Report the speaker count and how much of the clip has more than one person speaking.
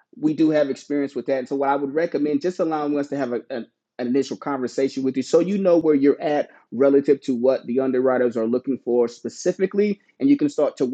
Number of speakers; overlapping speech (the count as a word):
one, no overlap